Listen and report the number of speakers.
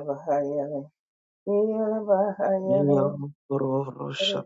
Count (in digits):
2